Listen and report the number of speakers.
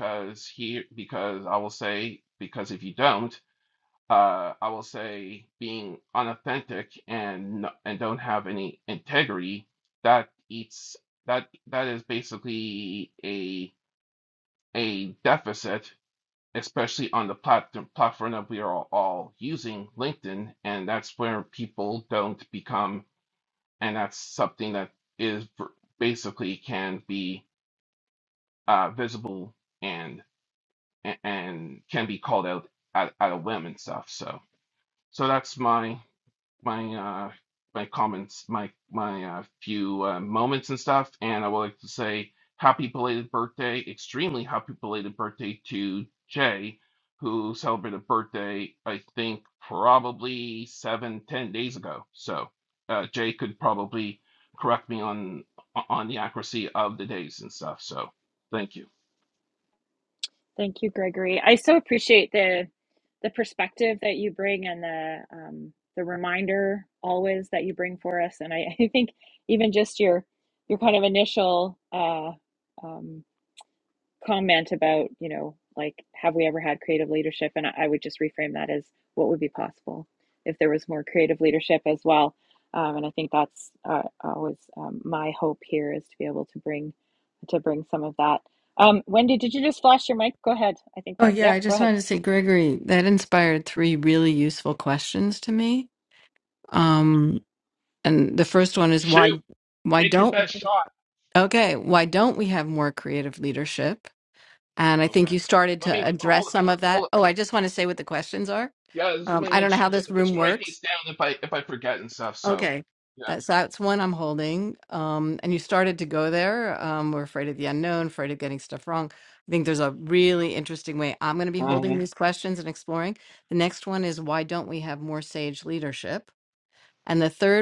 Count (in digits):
3